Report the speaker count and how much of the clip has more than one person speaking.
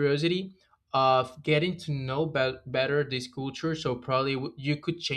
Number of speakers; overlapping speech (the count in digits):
1, no overlap